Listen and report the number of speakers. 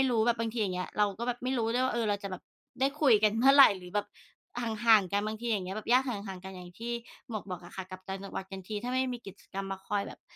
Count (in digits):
1